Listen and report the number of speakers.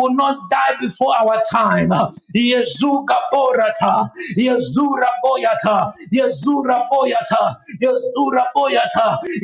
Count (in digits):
1